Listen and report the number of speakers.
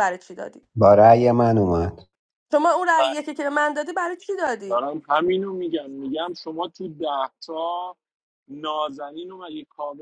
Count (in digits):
3